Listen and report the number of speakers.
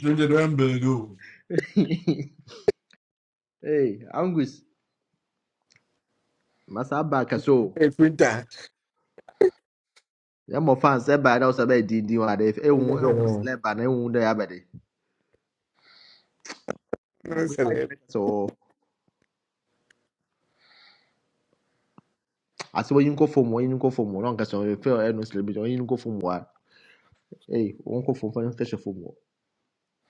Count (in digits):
3